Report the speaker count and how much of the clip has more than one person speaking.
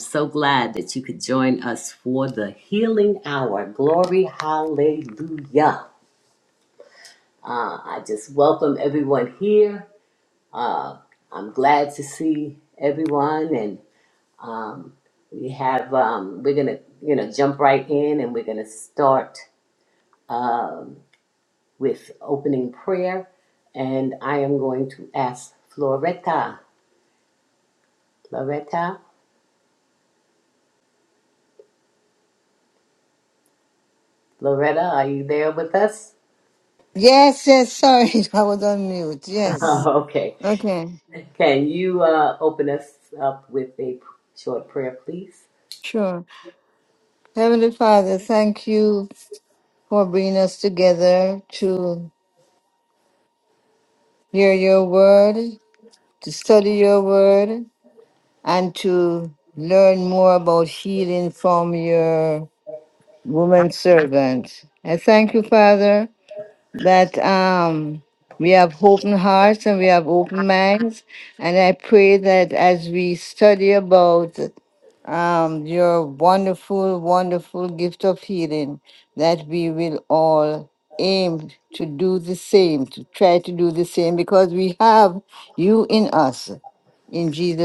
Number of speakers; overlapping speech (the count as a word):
two, no overlap